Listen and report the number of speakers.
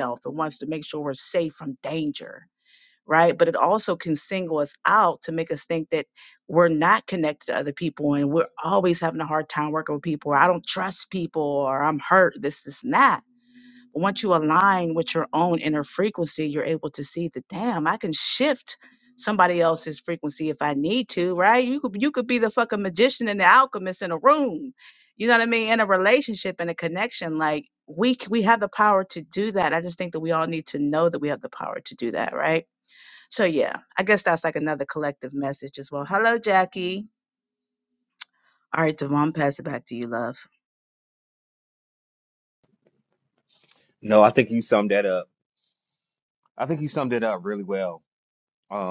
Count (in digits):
2